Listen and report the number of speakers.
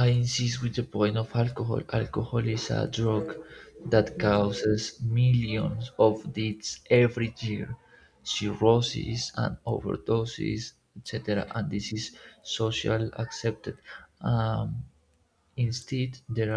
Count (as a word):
one